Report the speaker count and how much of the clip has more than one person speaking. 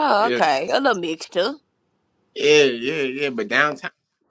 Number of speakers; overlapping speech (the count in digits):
2, about 6%